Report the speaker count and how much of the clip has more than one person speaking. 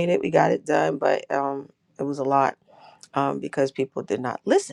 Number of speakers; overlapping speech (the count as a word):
one, no overlap